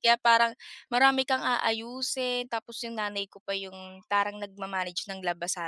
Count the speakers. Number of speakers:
1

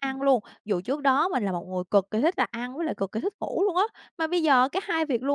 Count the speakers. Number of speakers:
1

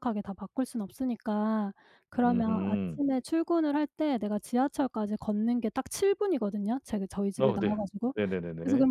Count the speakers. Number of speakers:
2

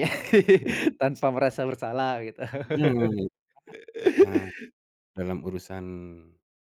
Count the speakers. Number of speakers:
2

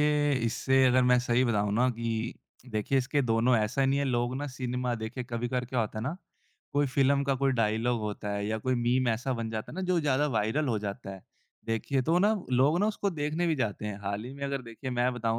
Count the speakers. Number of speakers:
1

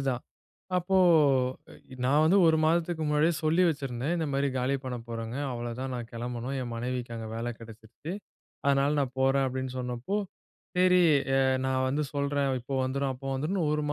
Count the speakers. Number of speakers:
1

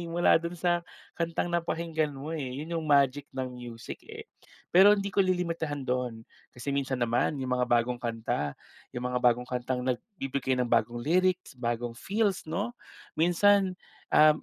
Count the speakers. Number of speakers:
1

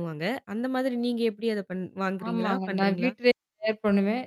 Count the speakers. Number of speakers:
2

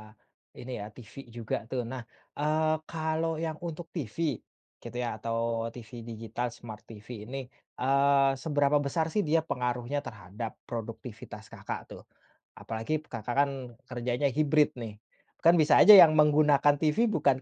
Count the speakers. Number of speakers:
1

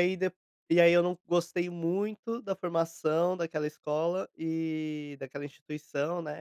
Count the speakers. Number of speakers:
1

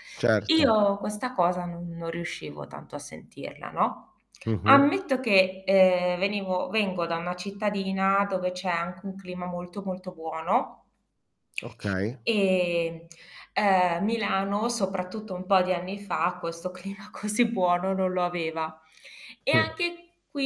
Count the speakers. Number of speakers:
2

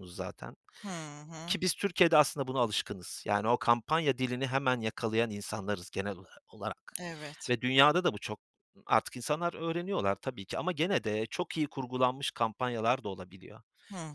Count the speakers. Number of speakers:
2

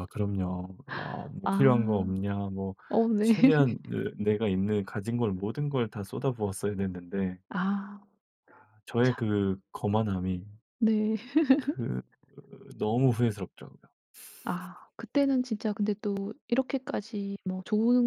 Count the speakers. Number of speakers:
2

